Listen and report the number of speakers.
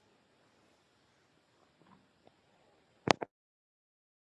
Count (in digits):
0